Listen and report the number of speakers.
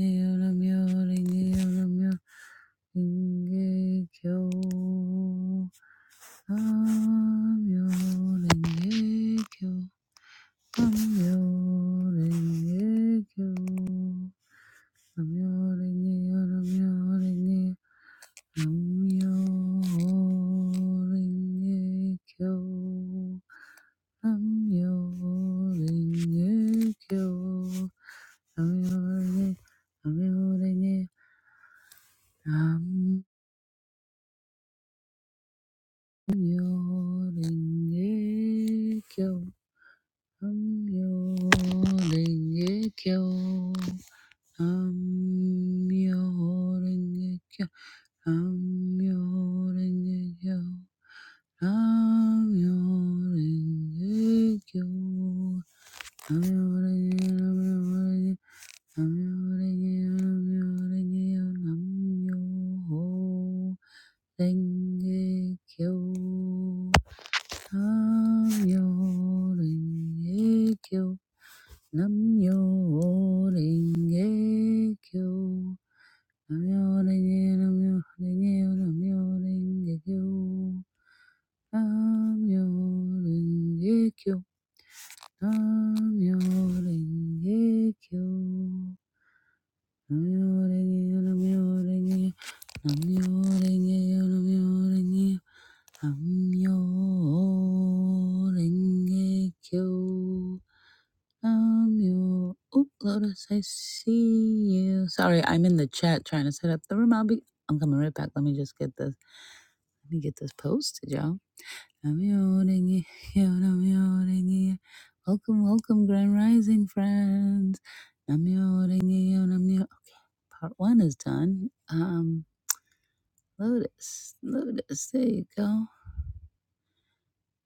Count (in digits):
1